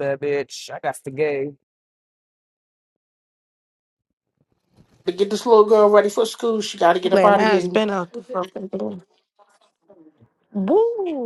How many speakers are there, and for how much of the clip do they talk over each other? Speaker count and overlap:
three, about 6%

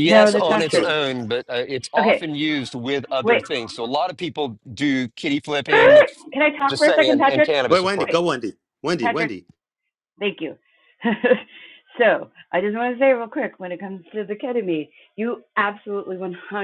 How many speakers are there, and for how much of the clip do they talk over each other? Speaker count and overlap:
three, about 19%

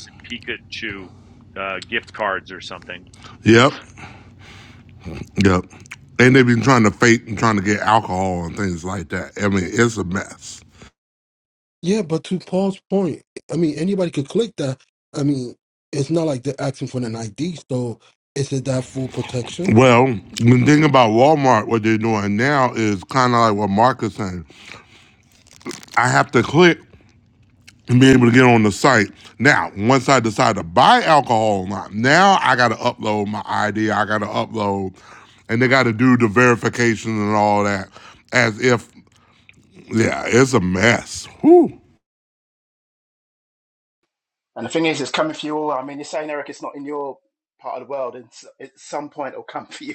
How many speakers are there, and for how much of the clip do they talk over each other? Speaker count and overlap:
four, under 1%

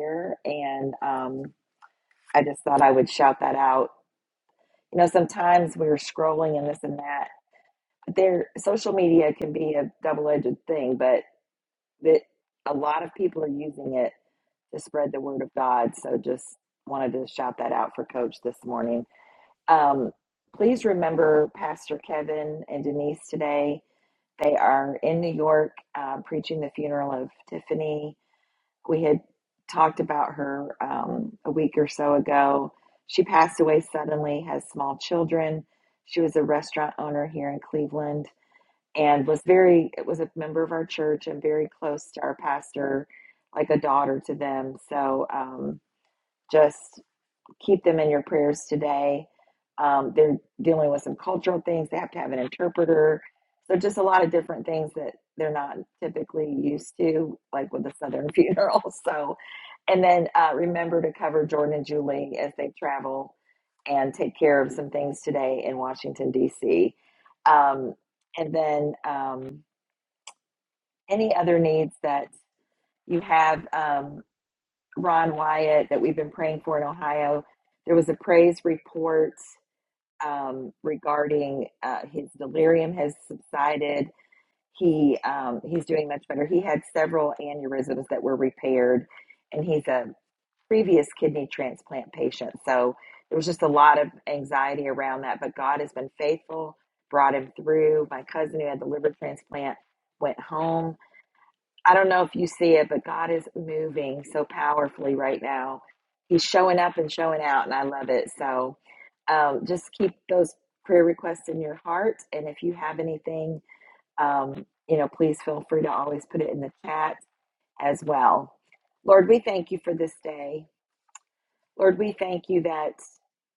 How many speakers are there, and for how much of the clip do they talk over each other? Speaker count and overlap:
one, no overlap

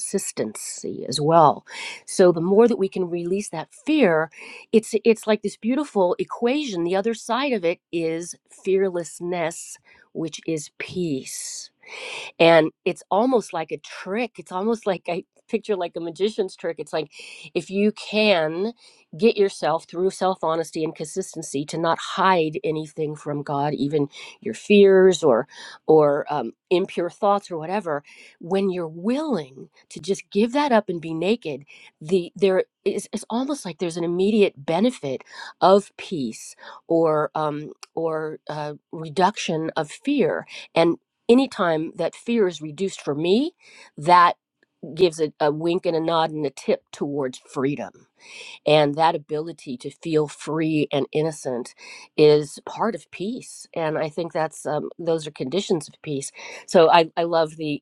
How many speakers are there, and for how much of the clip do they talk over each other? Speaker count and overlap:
one, no overlap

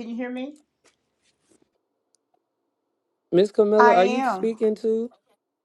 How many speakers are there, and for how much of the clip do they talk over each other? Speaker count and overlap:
two, about 12%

